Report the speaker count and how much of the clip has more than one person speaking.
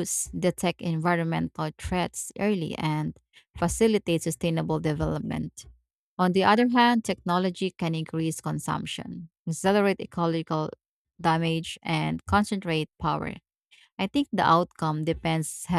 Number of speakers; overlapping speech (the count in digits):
1, no overlap